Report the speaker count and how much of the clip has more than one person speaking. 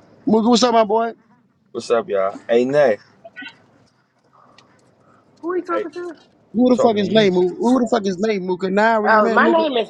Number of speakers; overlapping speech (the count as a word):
three, about 14%